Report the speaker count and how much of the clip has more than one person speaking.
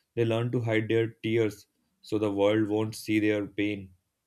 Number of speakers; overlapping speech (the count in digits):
1, no overlap